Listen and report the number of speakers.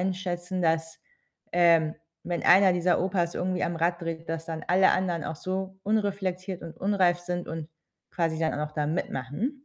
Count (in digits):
1